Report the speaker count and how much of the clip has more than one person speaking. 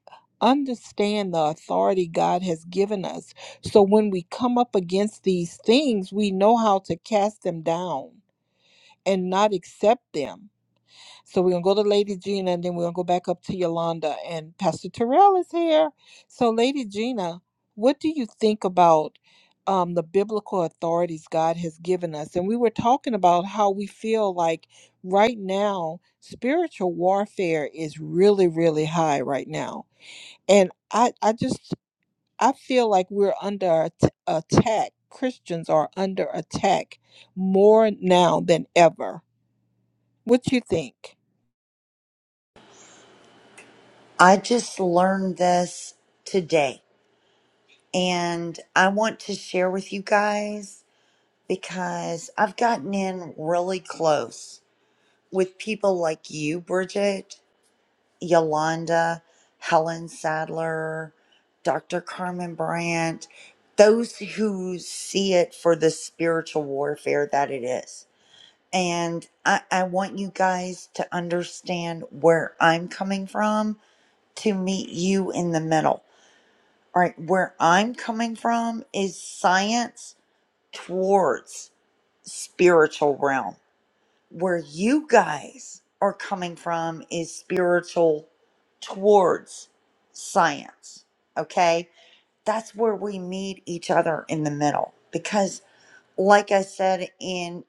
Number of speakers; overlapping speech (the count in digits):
2, no overlap